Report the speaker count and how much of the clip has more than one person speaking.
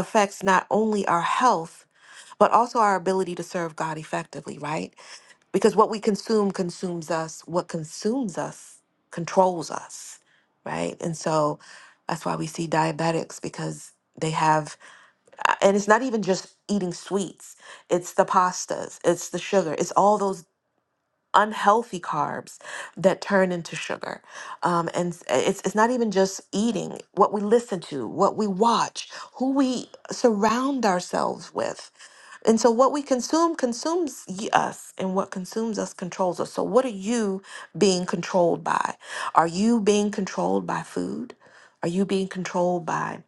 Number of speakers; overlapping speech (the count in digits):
1, no overlap